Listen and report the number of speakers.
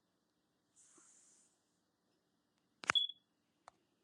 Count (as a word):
zero